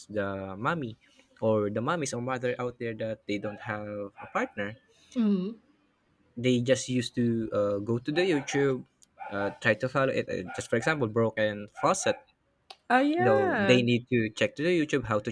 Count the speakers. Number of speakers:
two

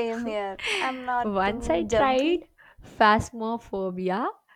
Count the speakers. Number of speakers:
two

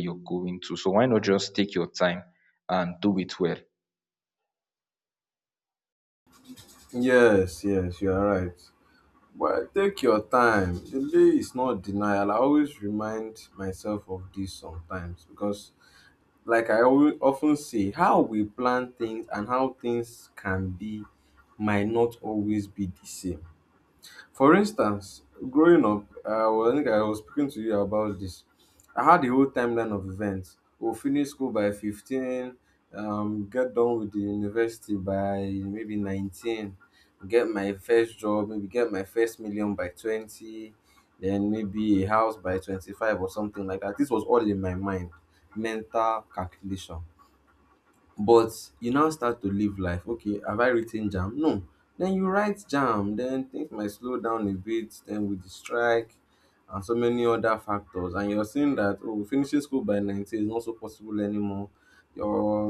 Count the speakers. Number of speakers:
two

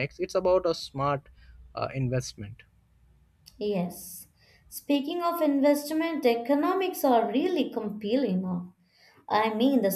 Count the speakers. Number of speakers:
two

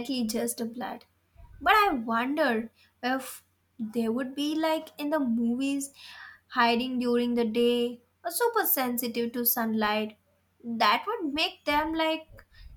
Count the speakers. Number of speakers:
one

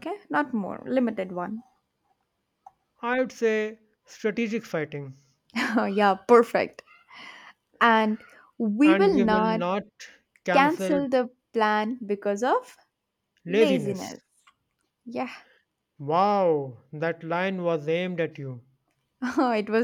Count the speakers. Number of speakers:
two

